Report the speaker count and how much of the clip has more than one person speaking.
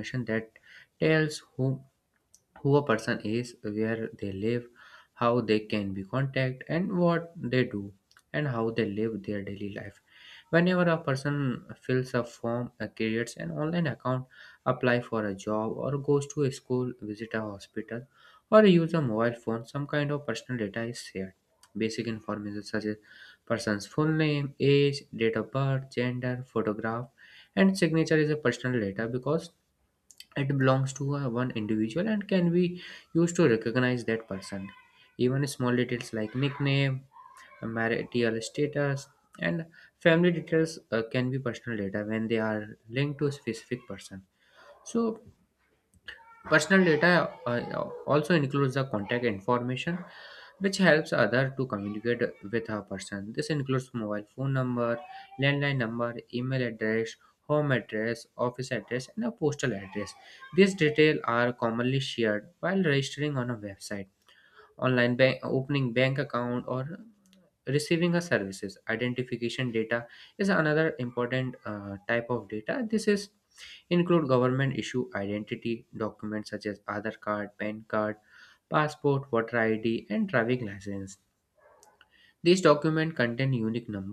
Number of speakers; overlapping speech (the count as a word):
one, no overlap